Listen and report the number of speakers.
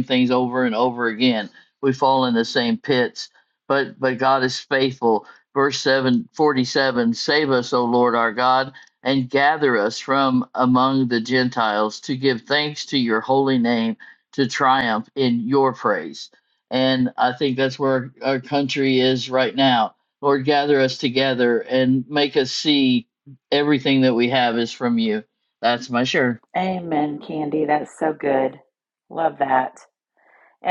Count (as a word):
two